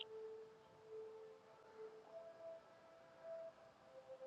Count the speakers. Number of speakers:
0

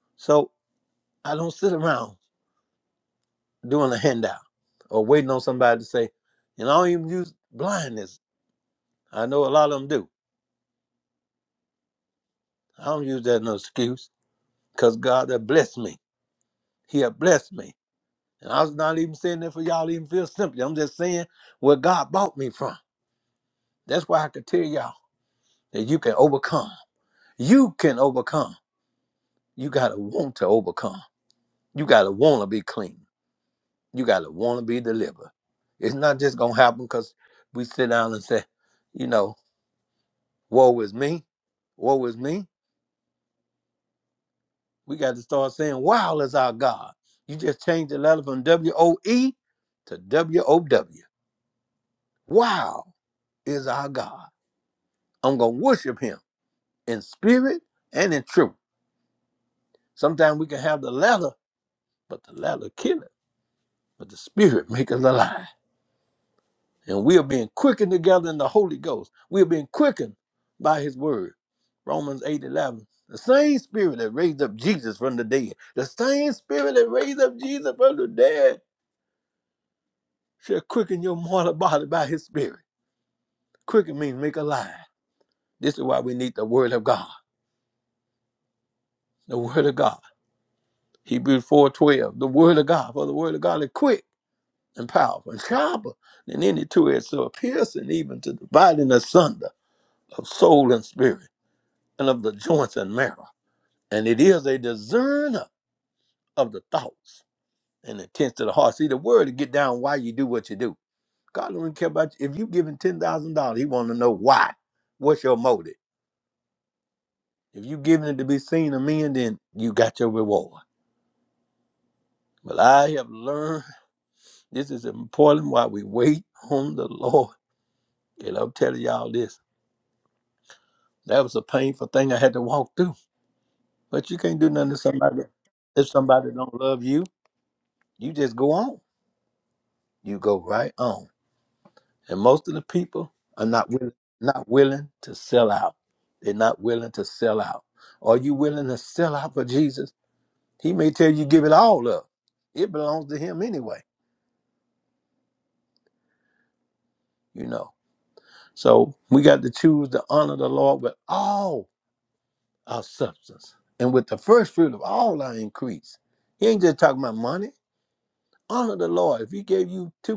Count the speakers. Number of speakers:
1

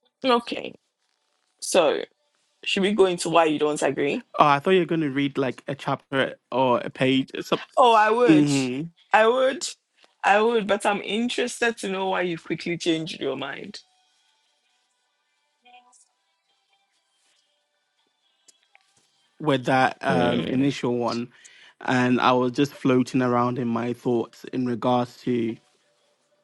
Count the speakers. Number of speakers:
2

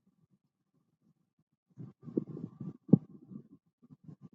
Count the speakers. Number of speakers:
0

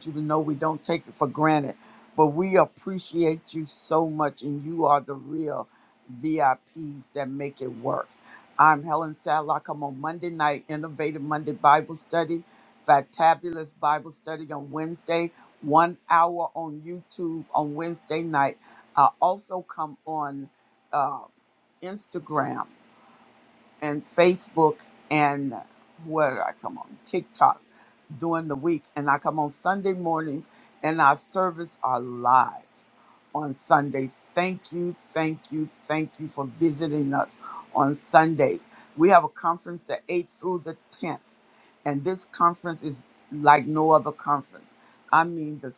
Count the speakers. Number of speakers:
1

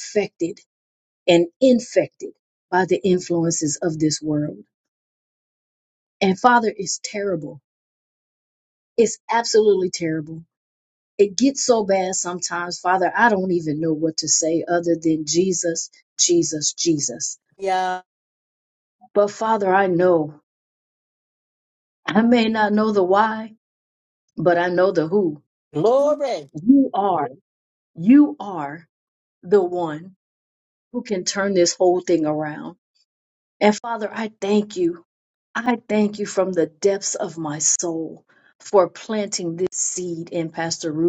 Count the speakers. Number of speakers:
2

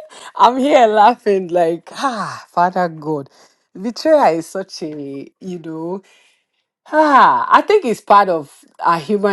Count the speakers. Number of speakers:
1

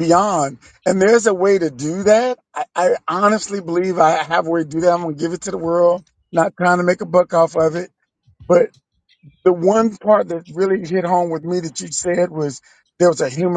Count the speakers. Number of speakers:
1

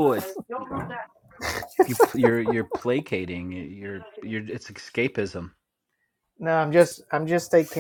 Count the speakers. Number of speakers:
3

